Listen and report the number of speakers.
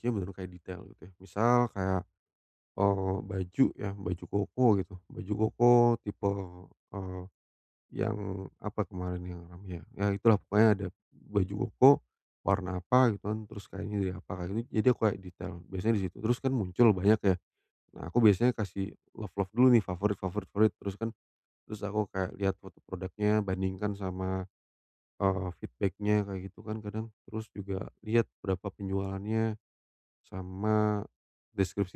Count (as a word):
one